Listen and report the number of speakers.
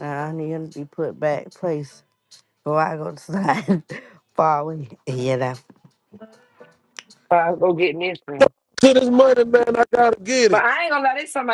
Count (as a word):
three